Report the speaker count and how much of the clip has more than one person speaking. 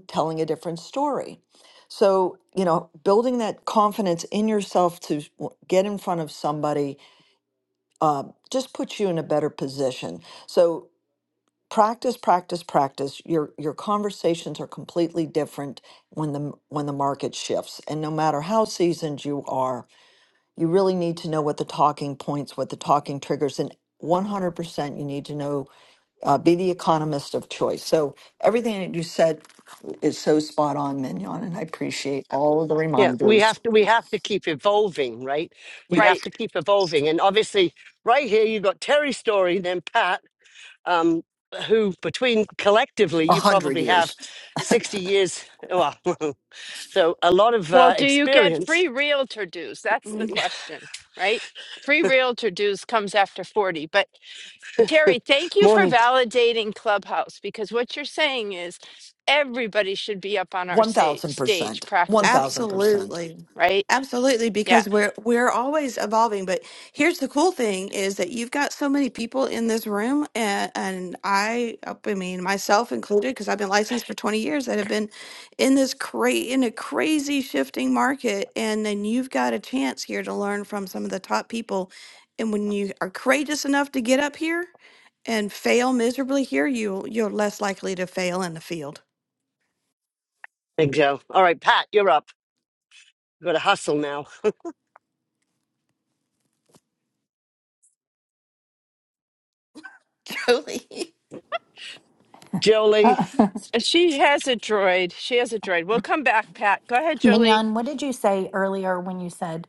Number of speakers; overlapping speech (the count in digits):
5, about 6%